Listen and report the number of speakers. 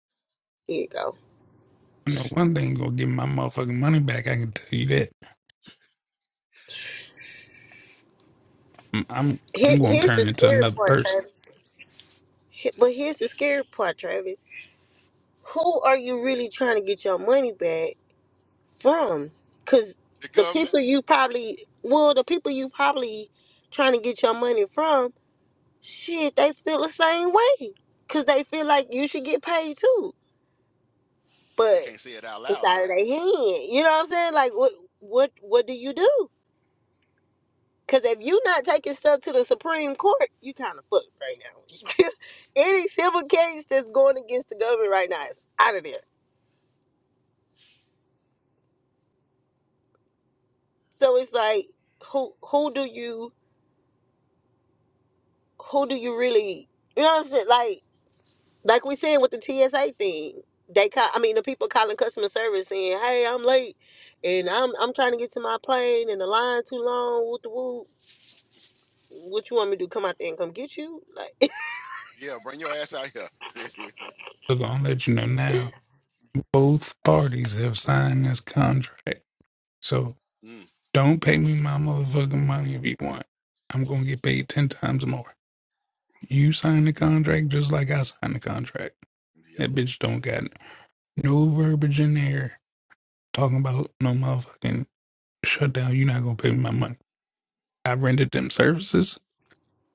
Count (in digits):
3